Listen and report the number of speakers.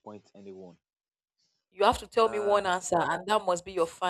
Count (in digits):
2